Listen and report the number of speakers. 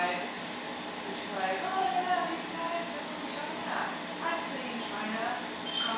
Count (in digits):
1